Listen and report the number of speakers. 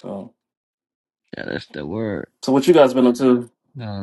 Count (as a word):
two